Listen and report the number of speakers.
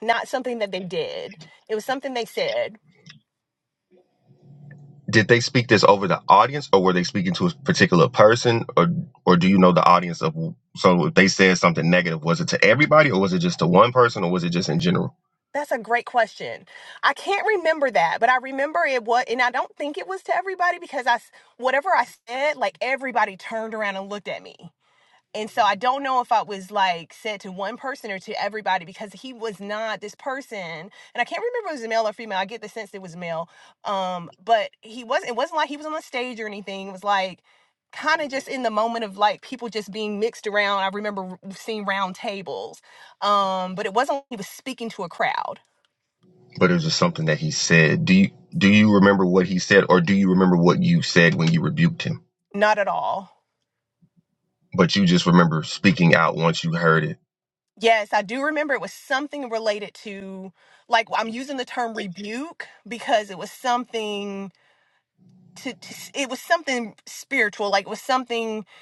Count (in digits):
2